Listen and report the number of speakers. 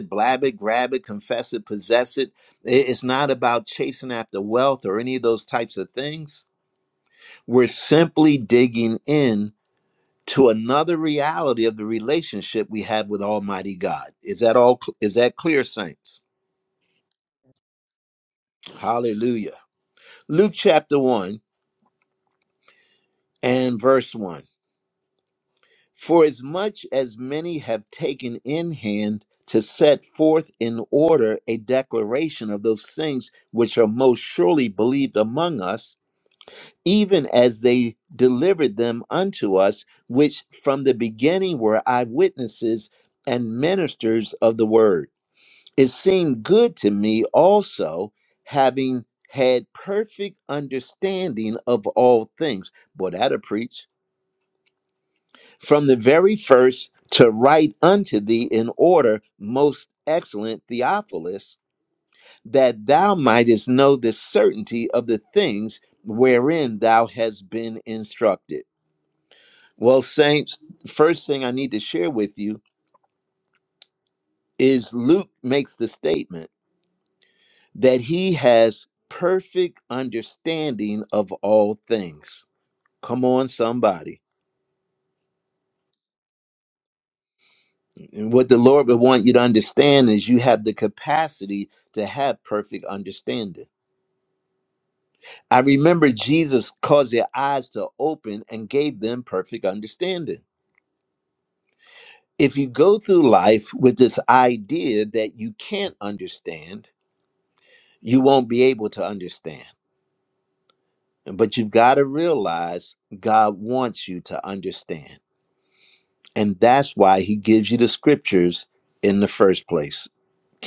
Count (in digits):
1